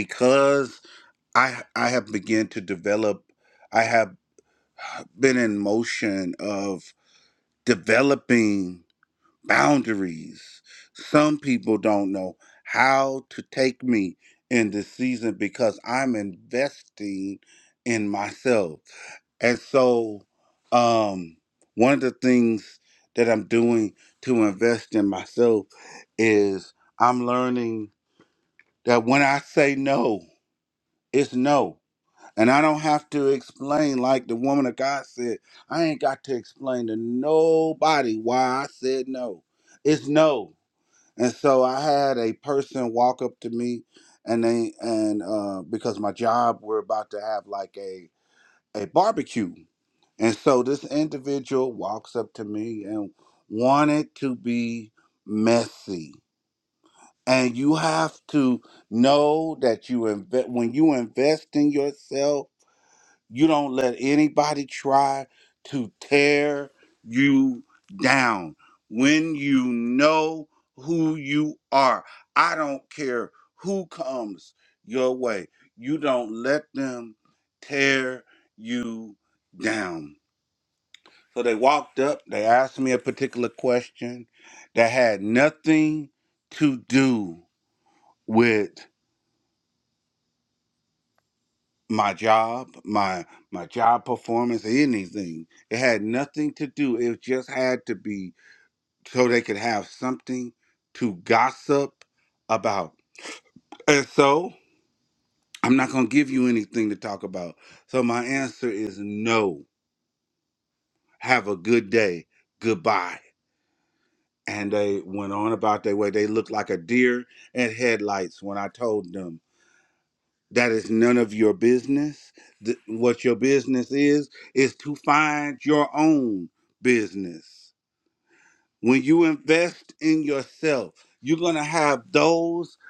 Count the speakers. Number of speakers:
1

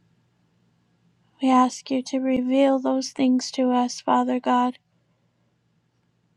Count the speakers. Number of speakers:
1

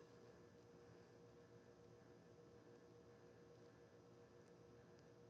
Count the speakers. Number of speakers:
0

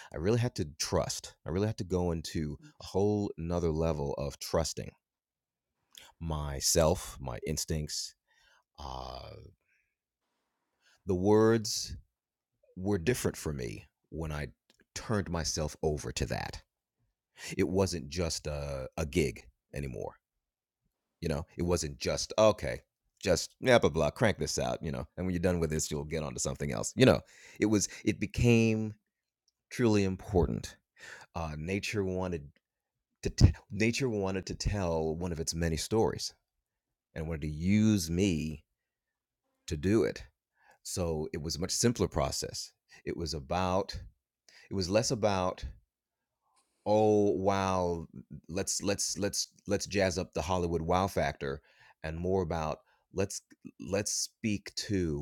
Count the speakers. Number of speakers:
1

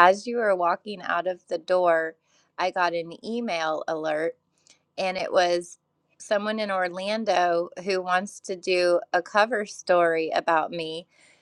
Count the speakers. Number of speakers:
1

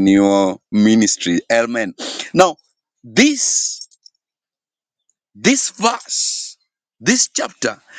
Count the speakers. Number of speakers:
1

